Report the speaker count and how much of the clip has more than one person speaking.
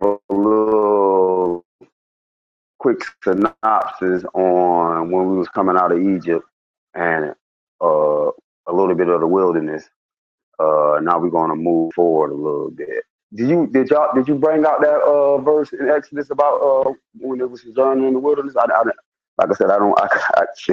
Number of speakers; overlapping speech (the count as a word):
one, no overlap